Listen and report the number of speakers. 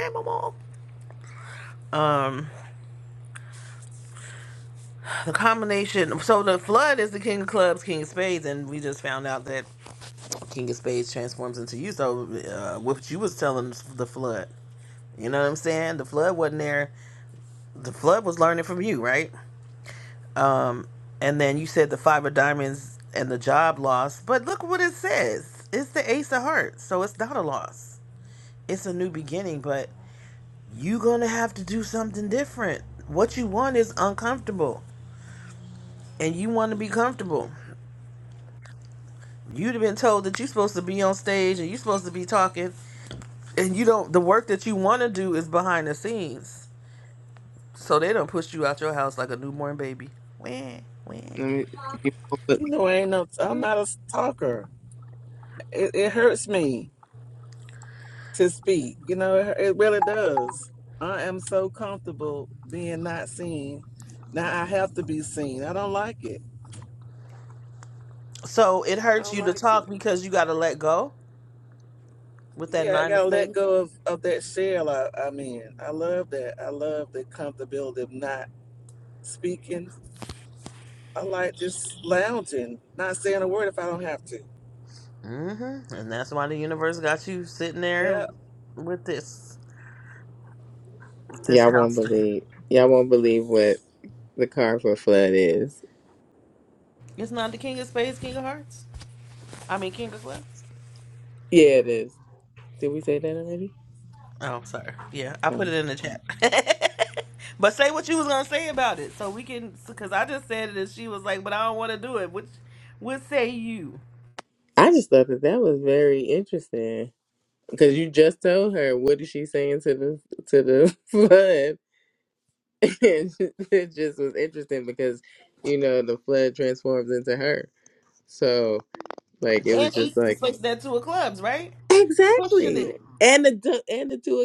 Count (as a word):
three